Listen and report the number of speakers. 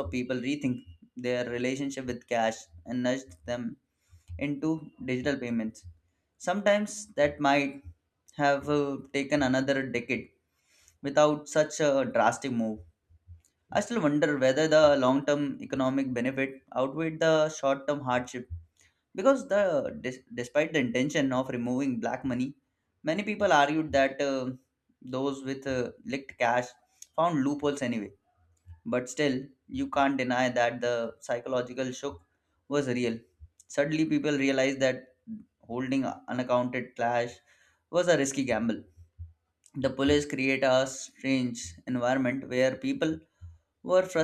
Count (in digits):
1